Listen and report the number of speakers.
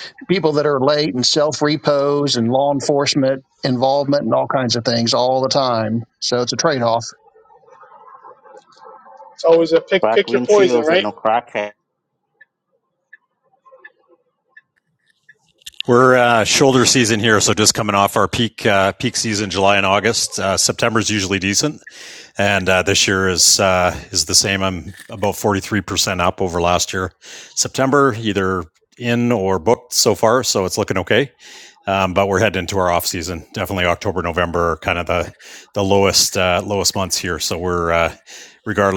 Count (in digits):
4